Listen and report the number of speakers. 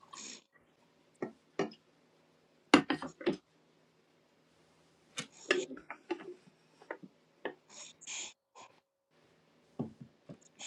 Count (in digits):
0